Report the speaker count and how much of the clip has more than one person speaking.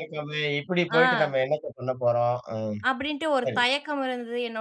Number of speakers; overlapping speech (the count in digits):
2, about 8%